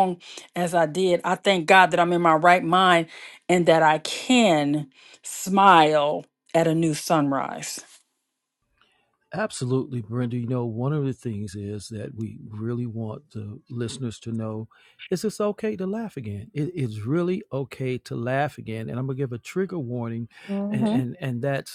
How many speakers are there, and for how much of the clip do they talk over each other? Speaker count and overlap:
2, about 1%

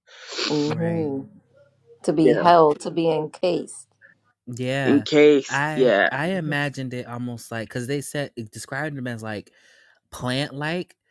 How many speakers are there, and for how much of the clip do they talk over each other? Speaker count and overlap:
3, about 17%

